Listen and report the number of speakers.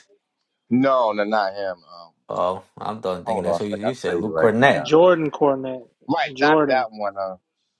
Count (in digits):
3